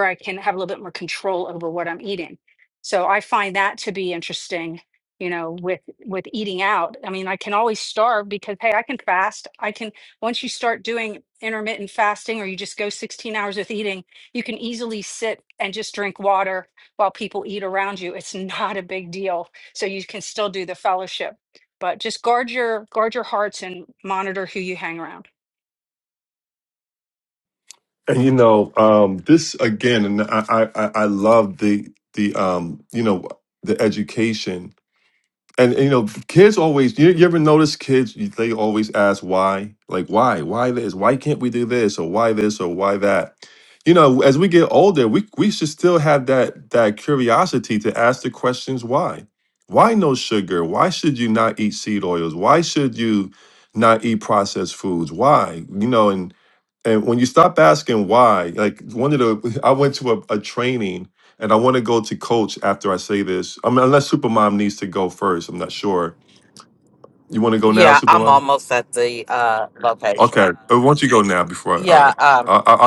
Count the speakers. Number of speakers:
3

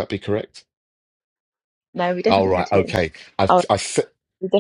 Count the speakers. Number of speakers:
2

